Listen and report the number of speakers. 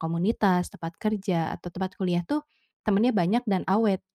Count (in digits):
1